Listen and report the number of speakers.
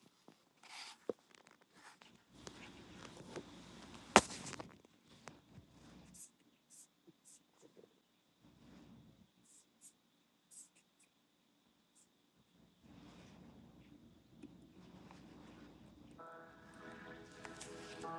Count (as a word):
zero